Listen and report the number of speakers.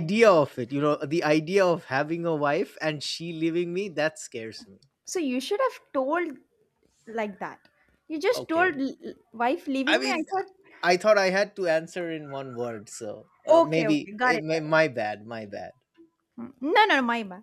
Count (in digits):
2